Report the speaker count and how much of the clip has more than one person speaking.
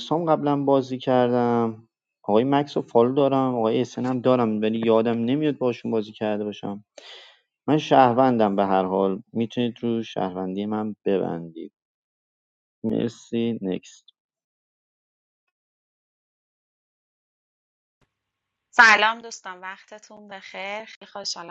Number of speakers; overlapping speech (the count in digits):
2, no overlap